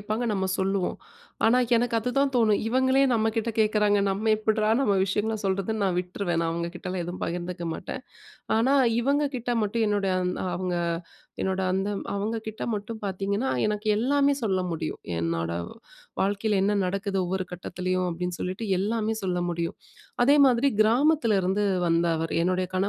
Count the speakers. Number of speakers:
one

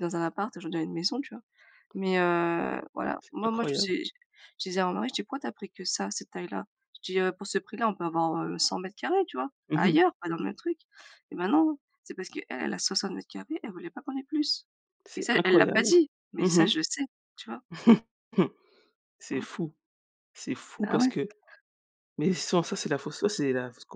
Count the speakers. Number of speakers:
two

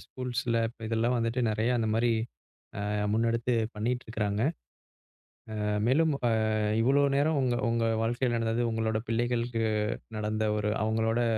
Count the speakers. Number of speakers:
one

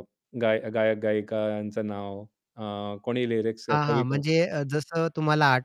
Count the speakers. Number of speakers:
two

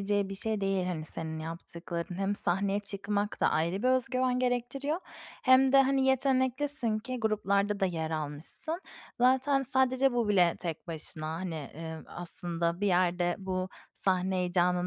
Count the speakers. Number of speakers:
one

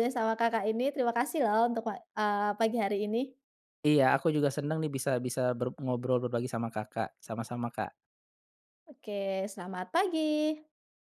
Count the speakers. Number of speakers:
two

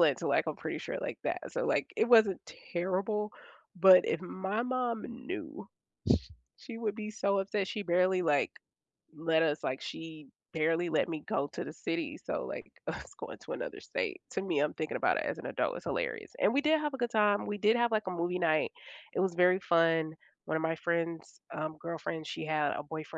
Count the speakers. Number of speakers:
one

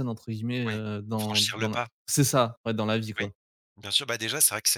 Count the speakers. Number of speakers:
two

